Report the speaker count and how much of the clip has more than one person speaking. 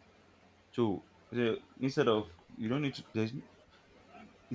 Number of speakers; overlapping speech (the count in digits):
1, no overlap